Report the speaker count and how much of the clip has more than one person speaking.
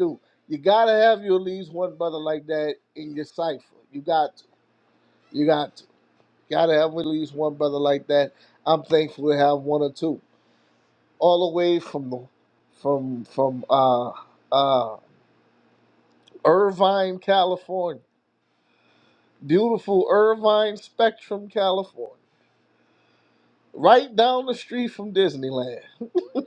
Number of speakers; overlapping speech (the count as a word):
one, no overlap